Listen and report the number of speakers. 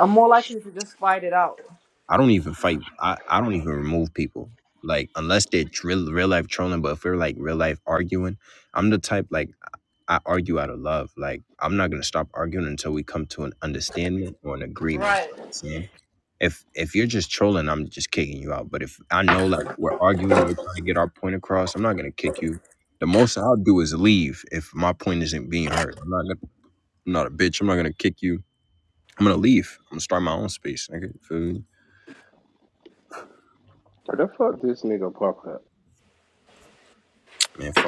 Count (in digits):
3